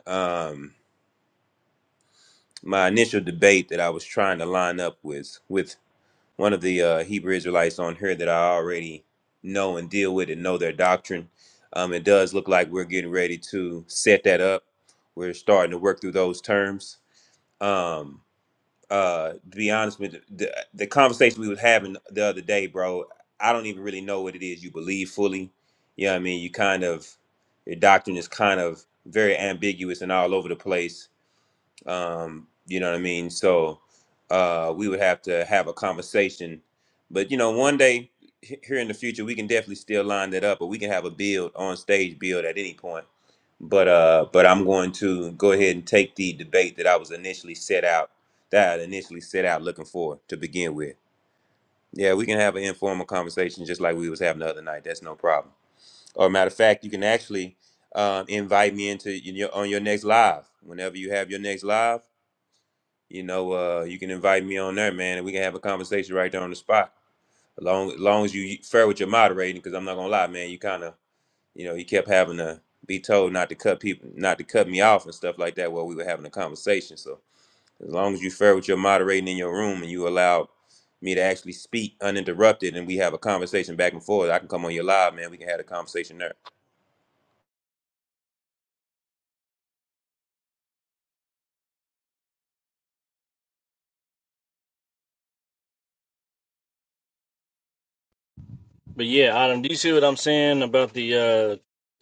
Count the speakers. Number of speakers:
two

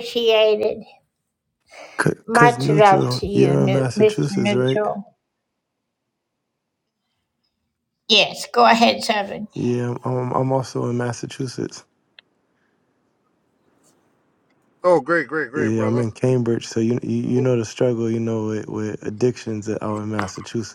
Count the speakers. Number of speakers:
three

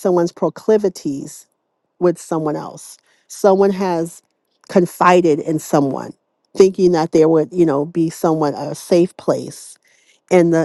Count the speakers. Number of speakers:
one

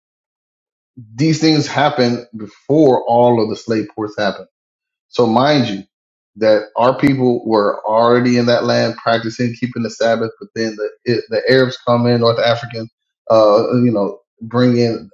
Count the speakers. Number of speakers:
one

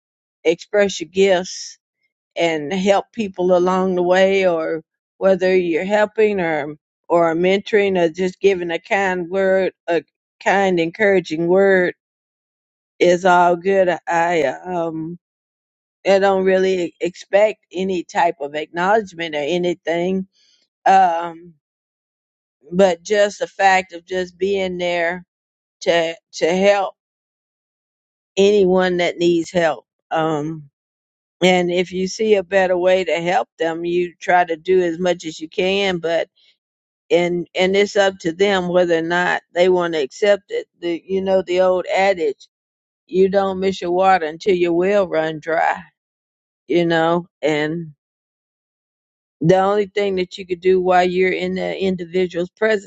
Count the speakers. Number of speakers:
one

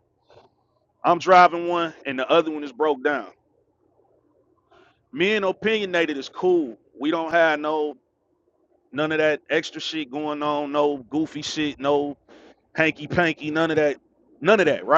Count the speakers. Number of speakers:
one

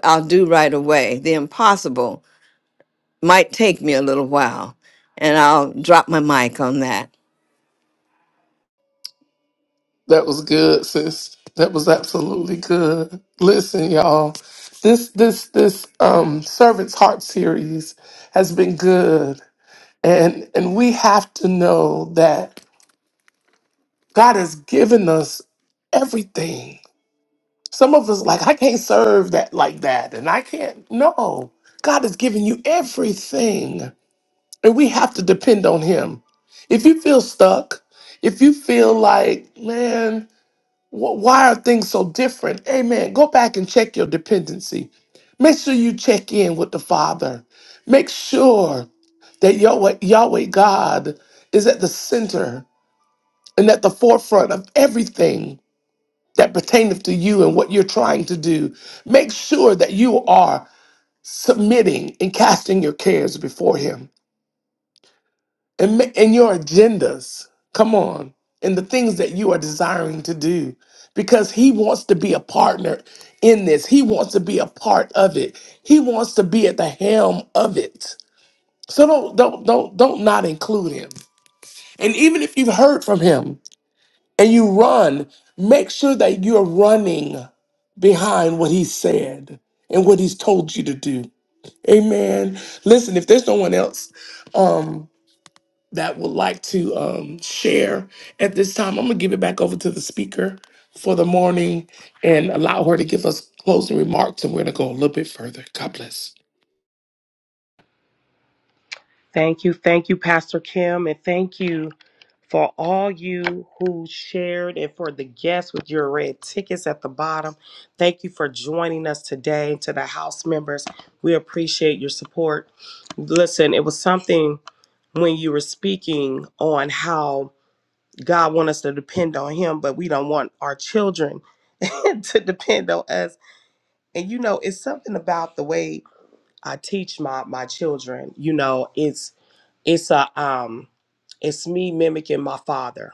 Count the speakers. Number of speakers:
three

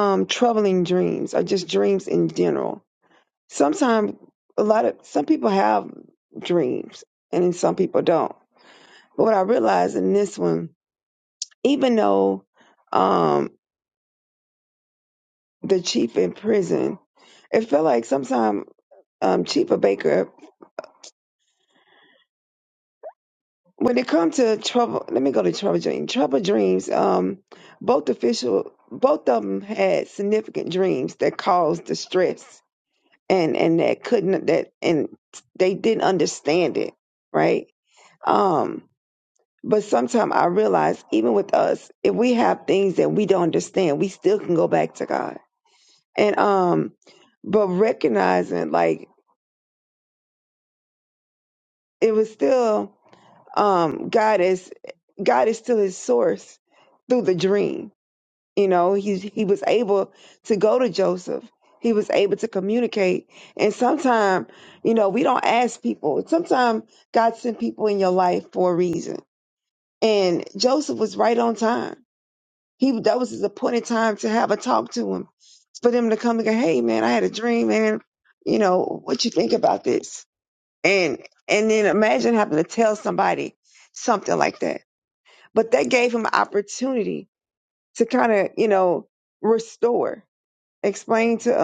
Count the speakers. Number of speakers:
one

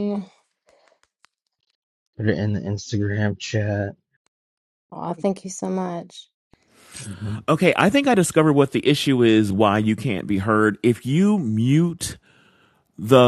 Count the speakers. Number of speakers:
three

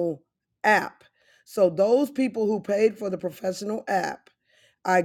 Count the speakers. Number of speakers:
one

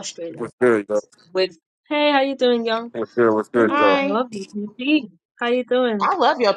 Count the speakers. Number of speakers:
three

